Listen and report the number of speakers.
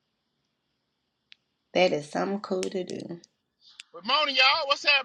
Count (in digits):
2